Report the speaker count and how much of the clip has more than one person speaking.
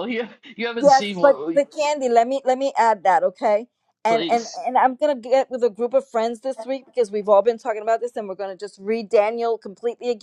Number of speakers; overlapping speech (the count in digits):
2, about 12%